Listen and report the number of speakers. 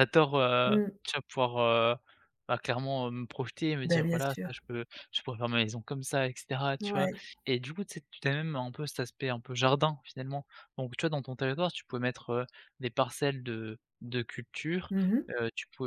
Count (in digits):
2